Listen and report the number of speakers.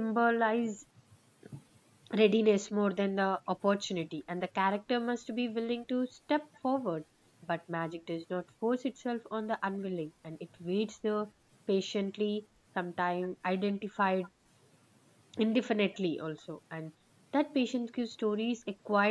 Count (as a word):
one